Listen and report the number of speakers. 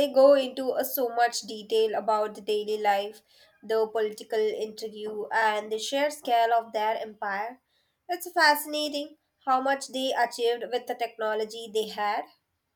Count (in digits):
1